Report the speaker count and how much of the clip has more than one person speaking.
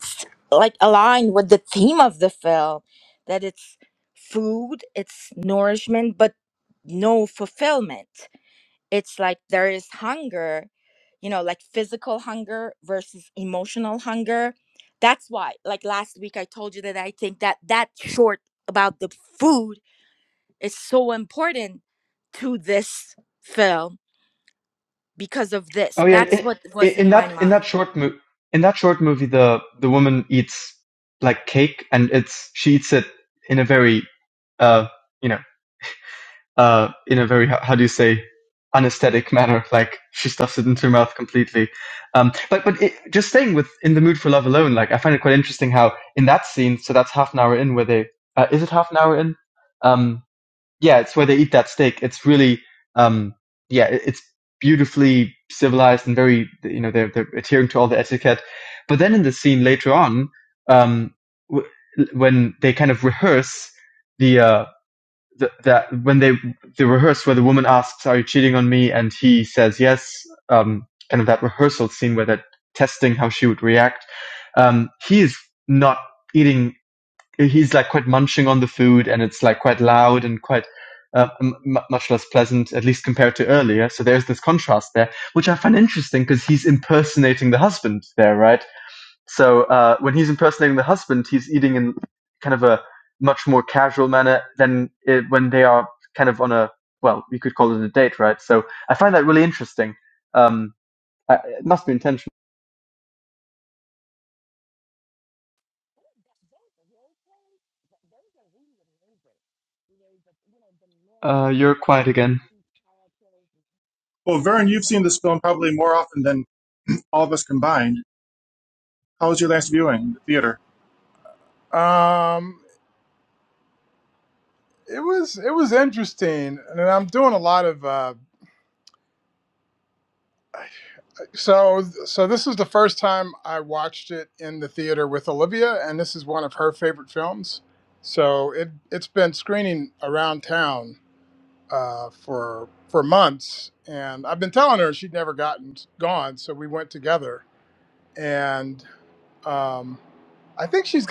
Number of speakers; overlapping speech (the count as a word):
four, about 1%